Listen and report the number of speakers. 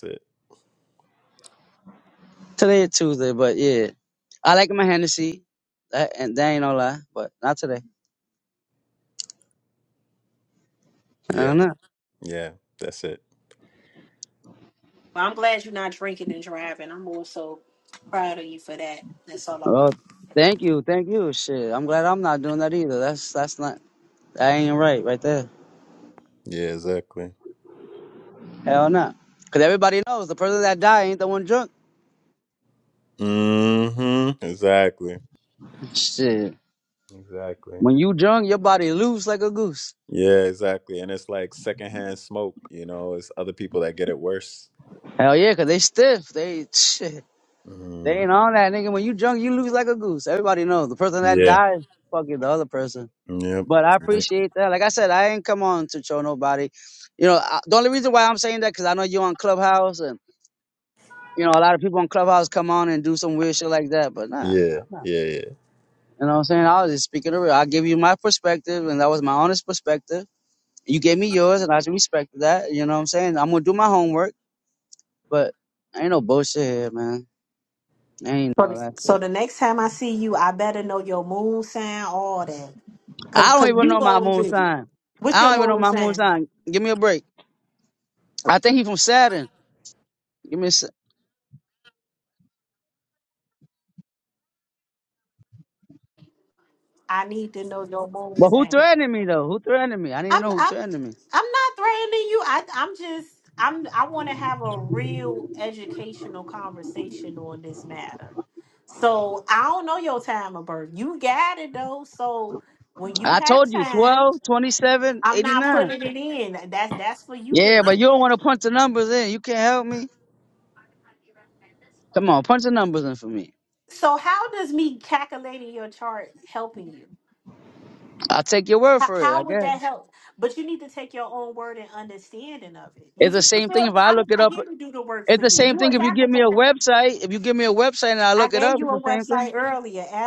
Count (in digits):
3